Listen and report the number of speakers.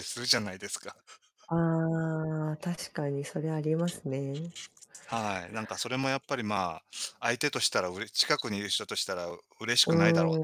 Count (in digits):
2